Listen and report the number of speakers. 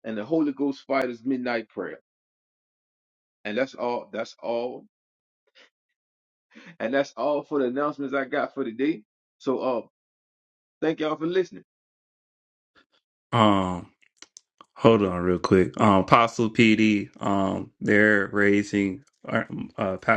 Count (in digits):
2